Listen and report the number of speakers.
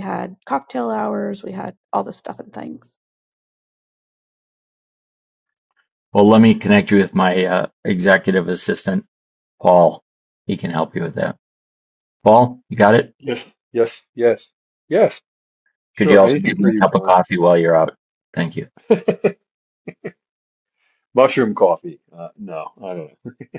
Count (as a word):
three